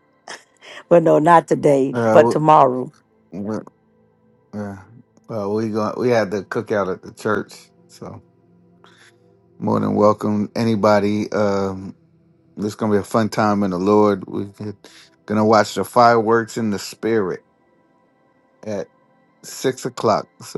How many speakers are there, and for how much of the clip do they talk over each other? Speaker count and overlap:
2, about 2%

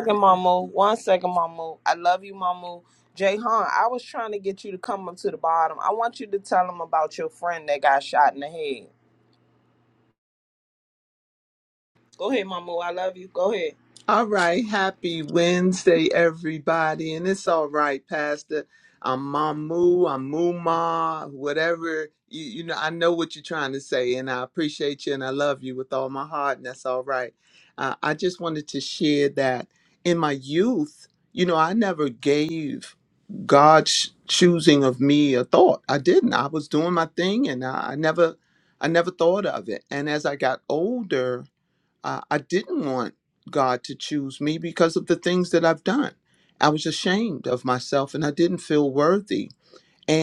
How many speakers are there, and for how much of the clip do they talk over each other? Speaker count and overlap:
2, no overlap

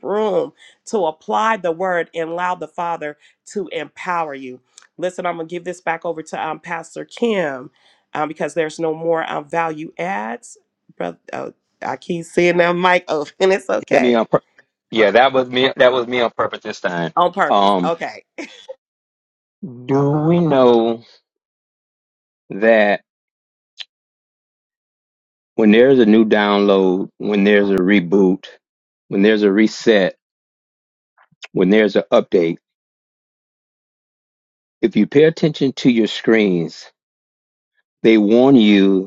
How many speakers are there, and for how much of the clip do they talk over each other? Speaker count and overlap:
2, about 2%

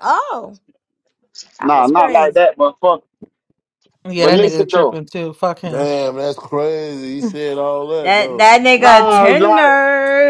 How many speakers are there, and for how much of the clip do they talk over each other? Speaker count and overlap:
5, about 30%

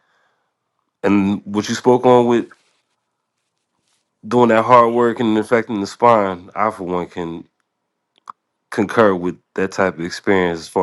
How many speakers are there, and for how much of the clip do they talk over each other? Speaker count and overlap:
1, no overlap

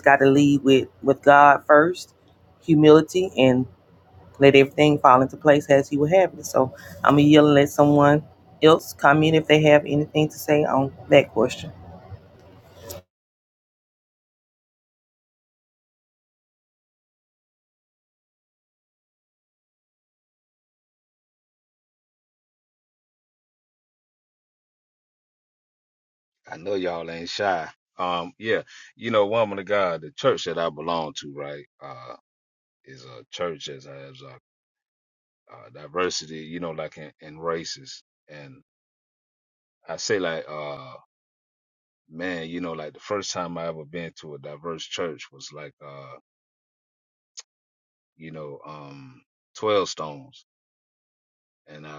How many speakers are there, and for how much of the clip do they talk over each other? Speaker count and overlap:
2, no overlap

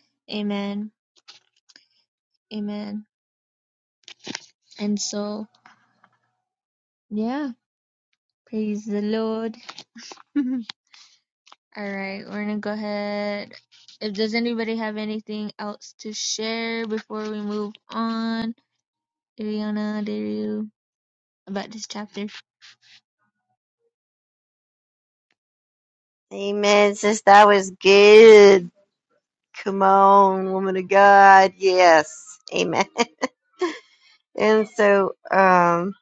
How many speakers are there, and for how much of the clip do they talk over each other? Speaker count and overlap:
2, no overlap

